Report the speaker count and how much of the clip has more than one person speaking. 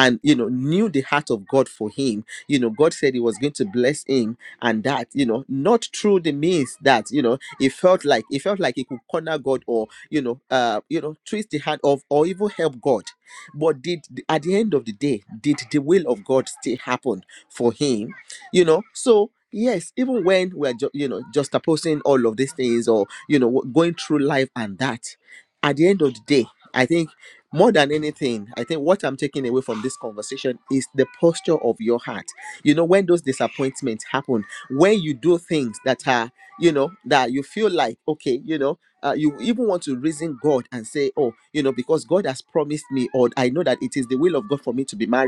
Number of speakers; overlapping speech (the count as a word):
one, no overlap